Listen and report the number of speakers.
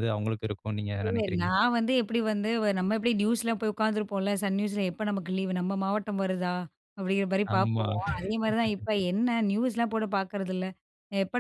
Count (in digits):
2